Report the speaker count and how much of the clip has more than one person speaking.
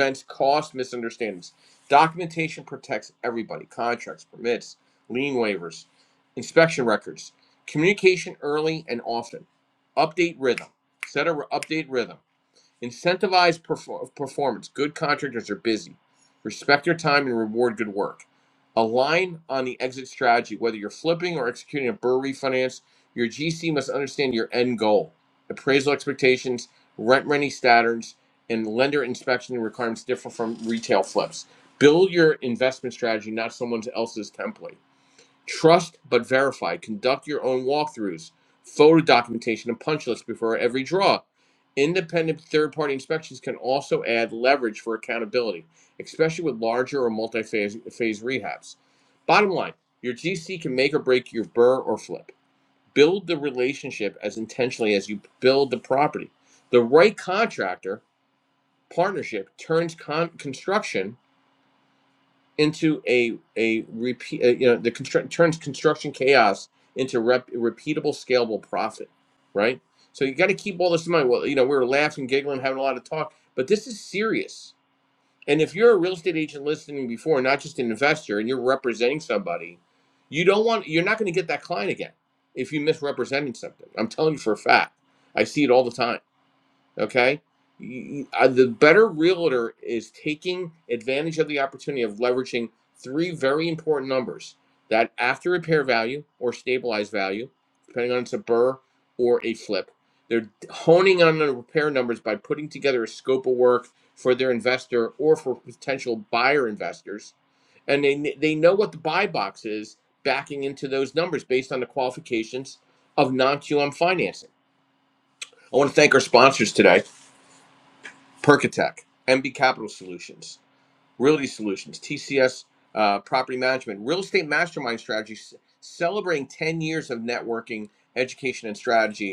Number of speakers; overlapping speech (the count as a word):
one, no overlap